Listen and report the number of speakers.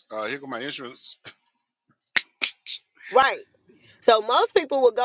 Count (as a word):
two